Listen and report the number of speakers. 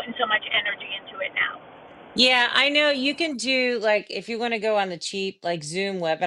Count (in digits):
2